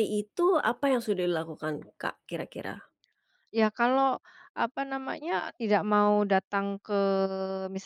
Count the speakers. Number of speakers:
2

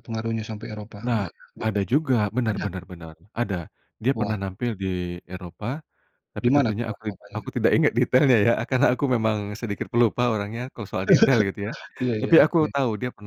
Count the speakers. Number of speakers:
2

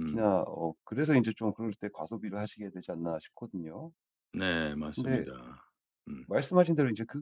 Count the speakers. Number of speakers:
2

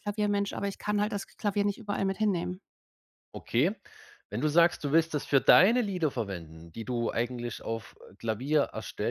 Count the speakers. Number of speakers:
2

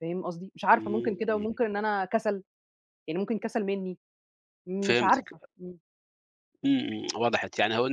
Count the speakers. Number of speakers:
2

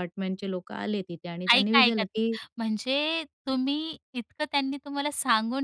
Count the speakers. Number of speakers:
2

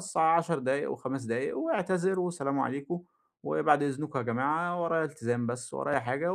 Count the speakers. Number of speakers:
1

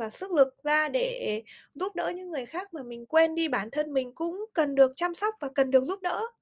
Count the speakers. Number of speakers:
1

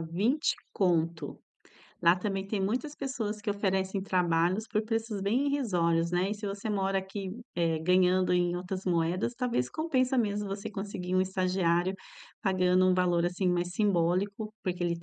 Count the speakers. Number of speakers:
1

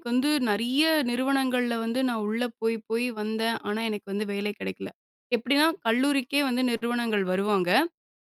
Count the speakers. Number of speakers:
1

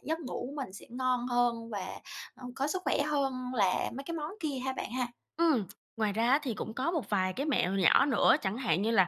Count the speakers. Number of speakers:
2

